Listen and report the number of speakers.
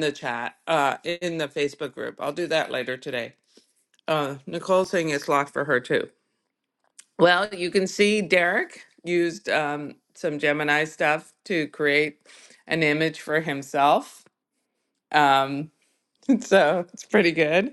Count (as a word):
one